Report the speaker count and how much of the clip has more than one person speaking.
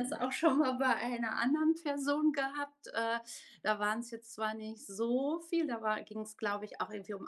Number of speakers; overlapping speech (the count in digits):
1, no overlap